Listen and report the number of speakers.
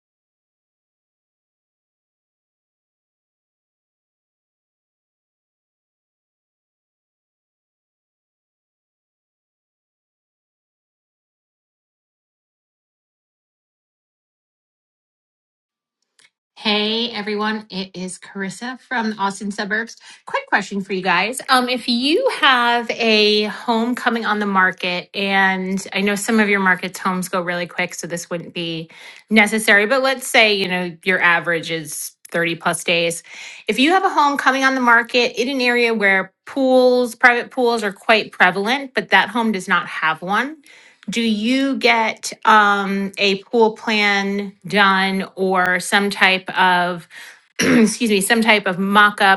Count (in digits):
1